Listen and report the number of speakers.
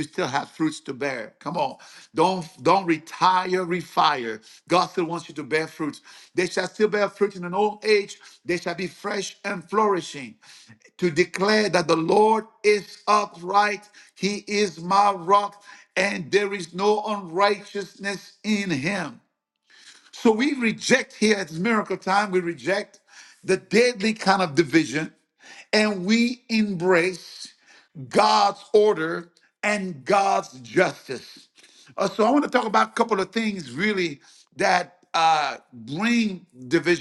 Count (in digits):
1